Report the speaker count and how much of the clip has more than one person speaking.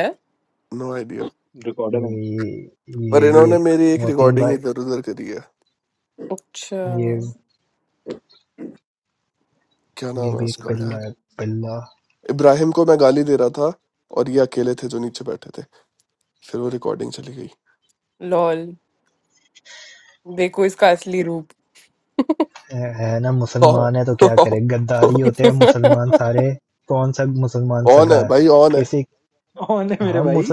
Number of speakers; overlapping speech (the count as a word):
four, about 10%